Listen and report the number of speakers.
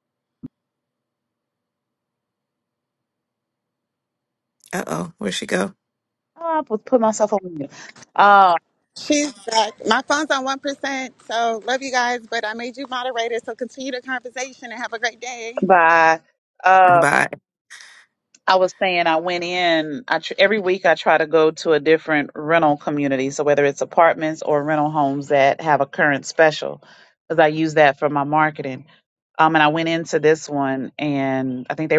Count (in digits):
3